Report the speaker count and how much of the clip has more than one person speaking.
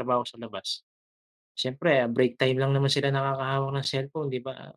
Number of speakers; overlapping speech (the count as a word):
one, no overlap